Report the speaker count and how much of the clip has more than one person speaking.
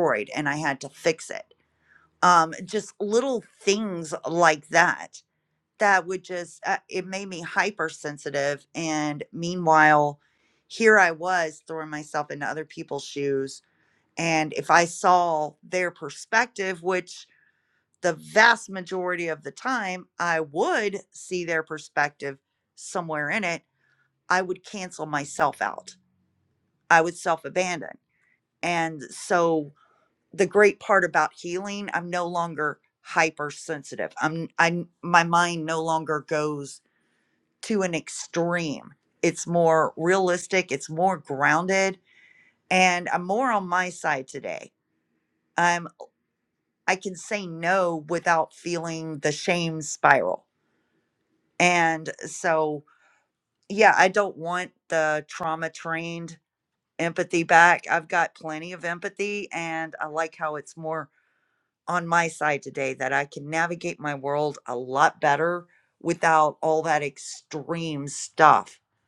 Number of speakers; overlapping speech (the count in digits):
1, no overlap